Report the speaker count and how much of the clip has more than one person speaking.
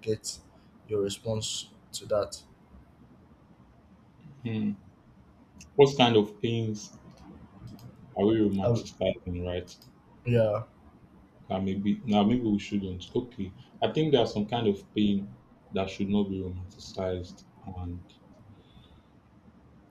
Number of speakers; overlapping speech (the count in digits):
2, about 1%